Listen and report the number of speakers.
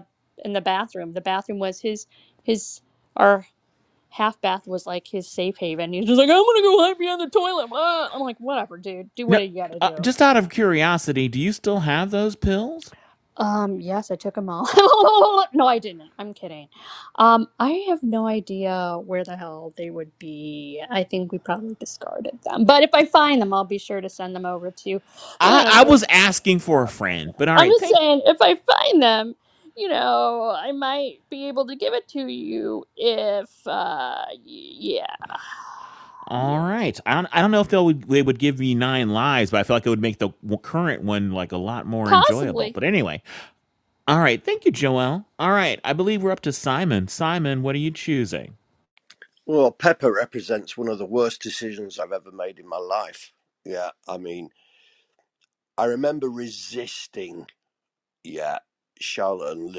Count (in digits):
3